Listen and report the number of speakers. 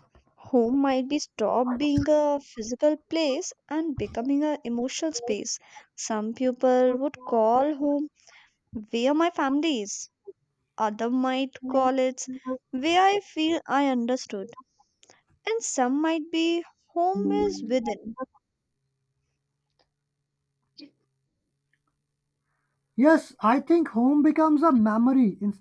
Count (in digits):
2